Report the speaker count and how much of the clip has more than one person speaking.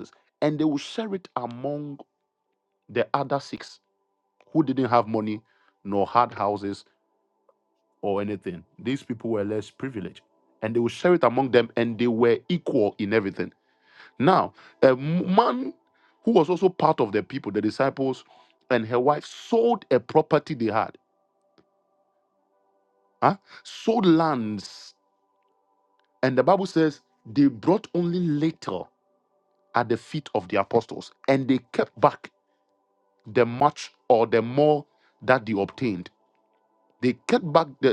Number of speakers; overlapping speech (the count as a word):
one, no overlap